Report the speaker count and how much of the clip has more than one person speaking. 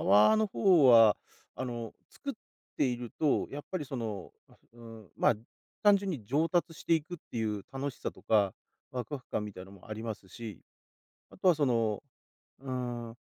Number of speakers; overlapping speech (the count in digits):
1, no overlap